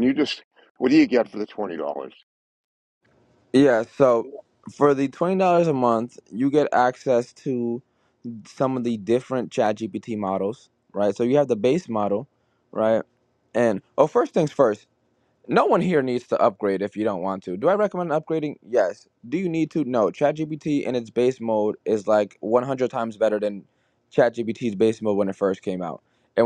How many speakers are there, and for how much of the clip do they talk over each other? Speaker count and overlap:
2, no overlap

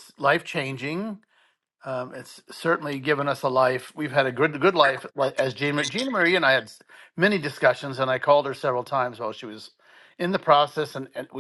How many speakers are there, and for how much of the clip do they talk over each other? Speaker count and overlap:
1, no overlap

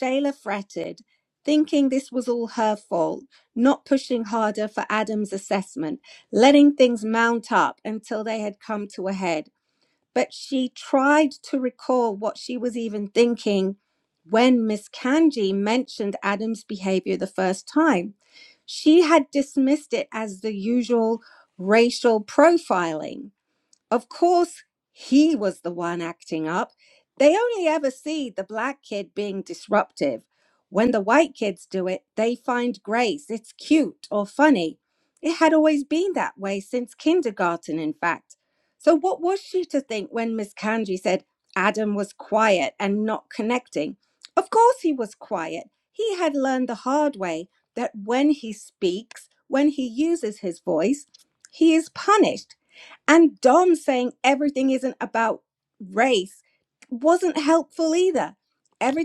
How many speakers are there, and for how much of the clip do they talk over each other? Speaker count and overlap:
1, no overlap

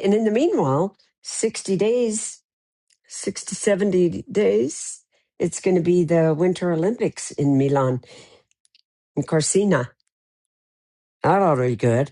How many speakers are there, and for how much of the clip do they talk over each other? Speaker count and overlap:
1, no overlap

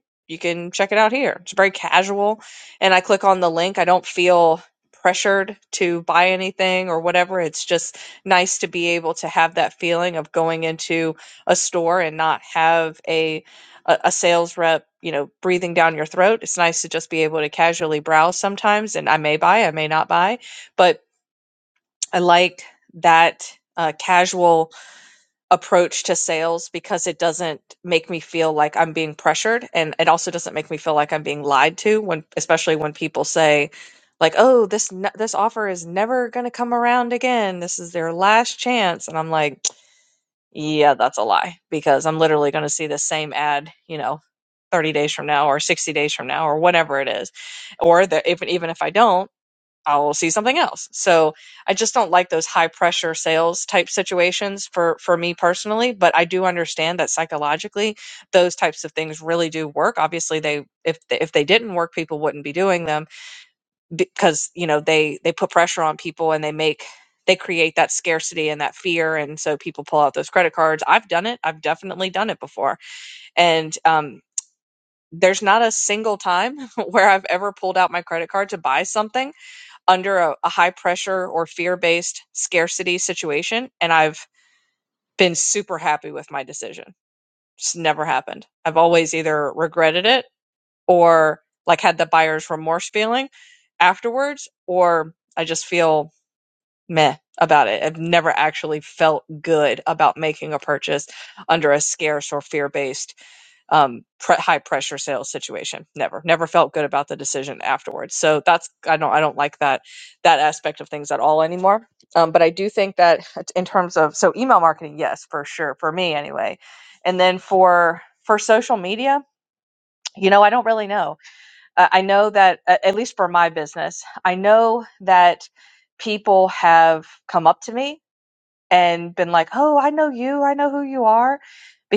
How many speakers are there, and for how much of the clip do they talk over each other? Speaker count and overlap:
1, no overlap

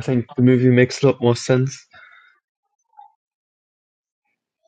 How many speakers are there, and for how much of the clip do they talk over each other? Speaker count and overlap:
1, no overlap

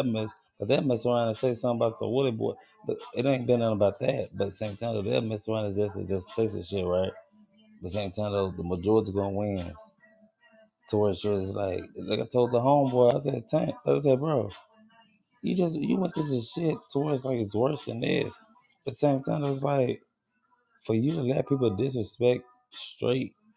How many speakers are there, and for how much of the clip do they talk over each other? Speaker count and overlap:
1, no overlap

